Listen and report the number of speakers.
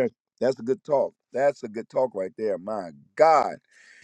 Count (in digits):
1